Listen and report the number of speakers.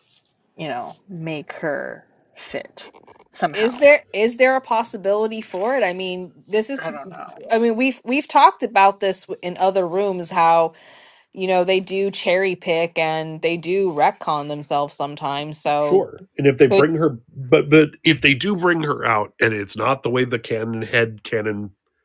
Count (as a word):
three